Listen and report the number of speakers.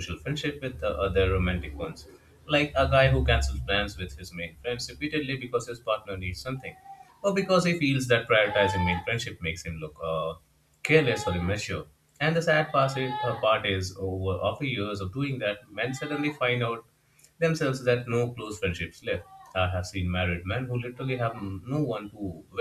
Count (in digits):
1